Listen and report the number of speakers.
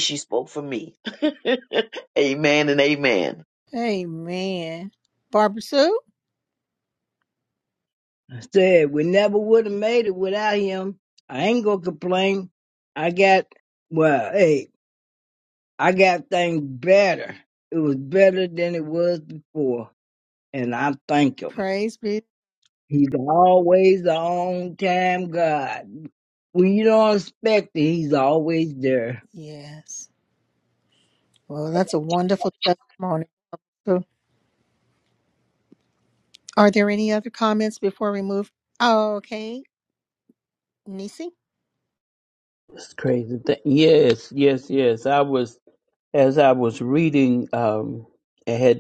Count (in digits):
4